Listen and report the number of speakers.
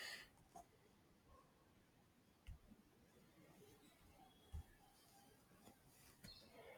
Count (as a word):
zero